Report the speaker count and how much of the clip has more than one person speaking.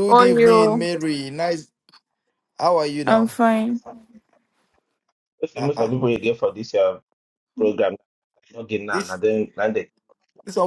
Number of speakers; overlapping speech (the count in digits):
3, about 15%